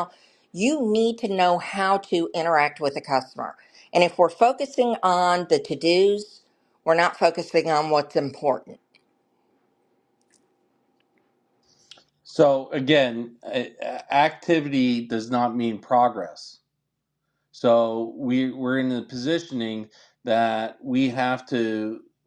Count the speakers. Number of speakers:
2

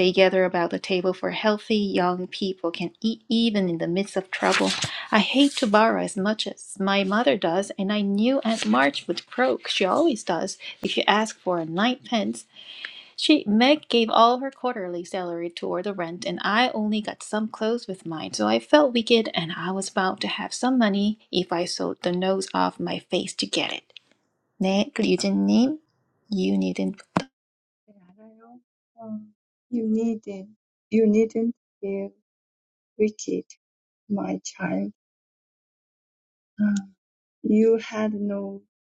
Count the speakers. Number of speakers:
2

